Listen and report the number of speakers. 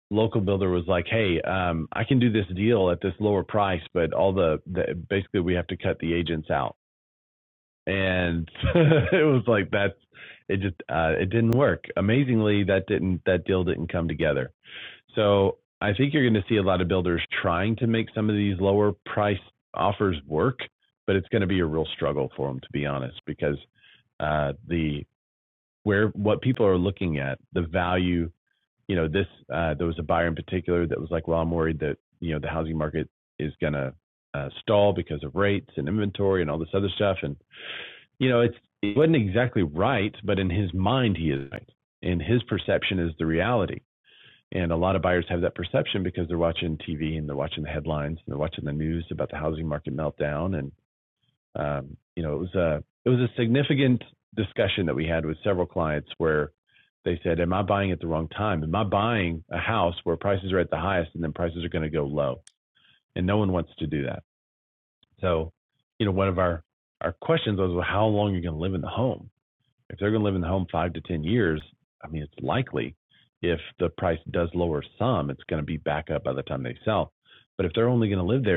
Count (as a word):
one